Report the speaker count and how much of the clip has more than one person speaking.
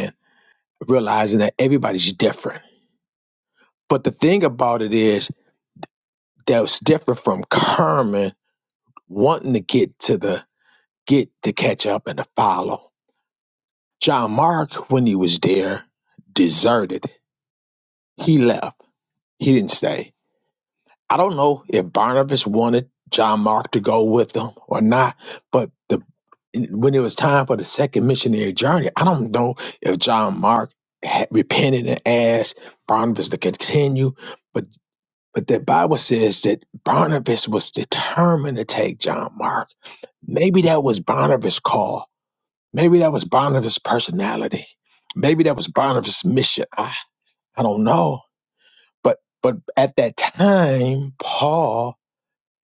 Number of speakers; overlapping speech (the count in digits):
1, no overlap